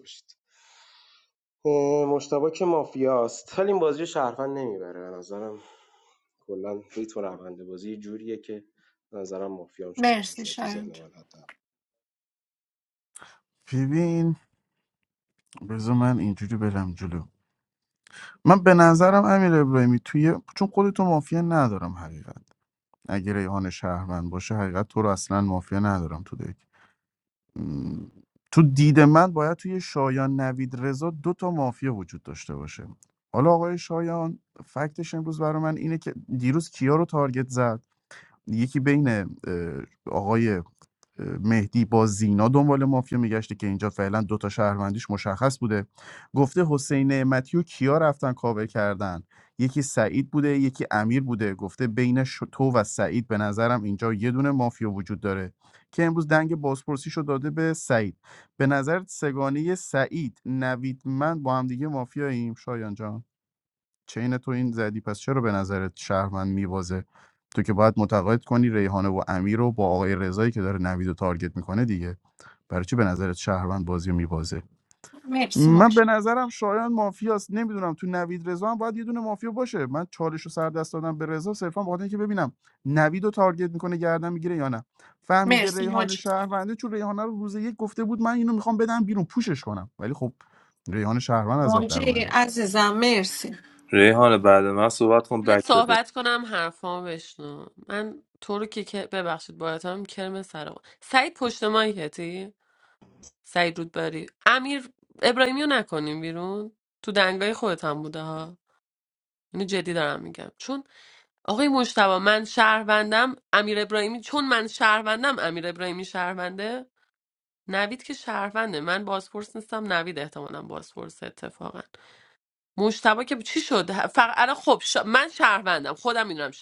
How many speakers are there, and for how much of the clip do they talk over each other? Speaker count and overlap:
5, about 3%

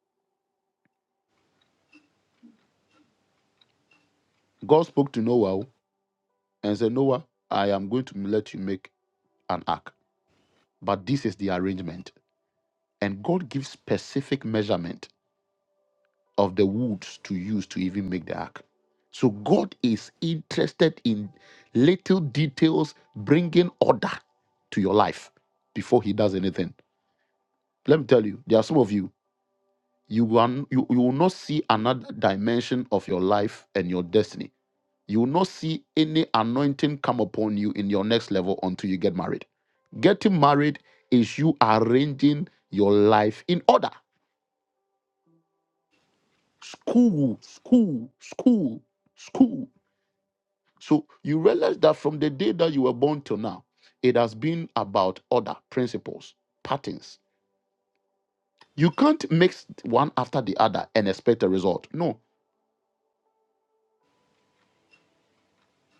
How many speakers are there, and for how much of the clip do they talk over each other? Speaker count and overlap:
1, no overlap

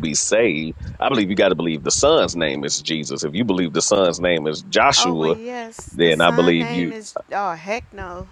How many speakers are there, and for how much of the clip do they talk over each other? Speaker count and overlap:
2, about 16%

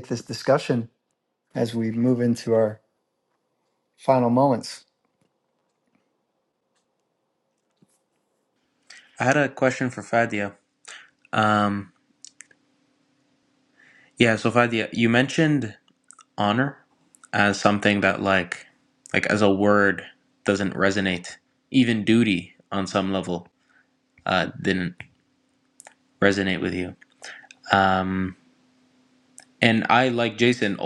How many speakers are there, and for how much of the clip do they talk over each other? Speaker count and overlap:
2, no overlap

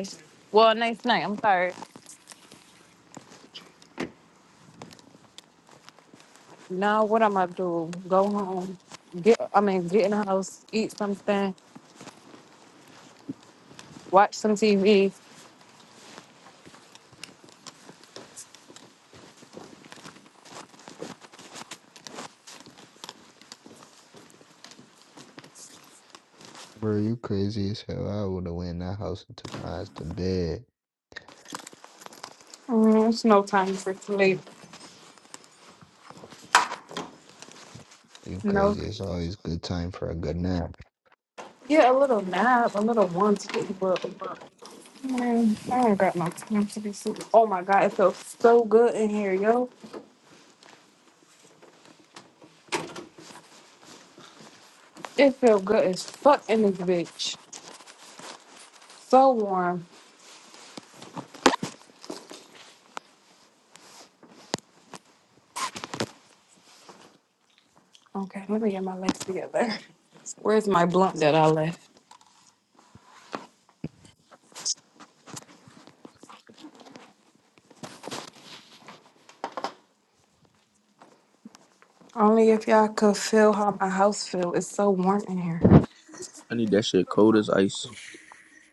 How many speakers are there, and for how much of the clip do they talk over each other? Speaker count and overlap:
3, under 1%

